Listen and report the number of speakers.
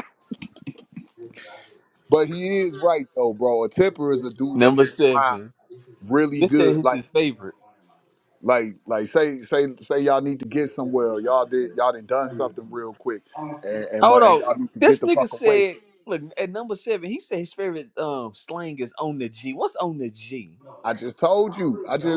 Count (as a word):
two